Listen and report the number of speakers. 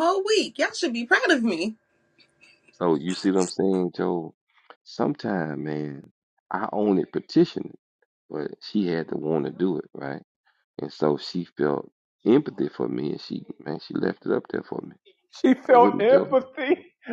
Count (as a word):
three